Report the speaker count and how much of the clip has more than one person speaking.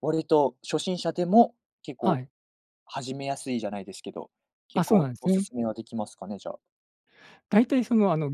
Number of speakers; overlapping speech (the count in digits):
2, about 10%